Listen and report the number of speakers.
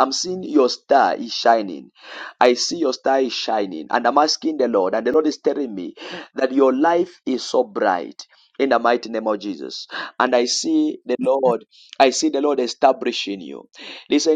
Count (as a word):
one